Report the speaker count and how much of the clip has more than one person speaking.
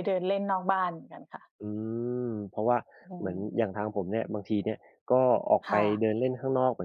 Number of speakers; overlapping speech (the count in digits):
2, about 8%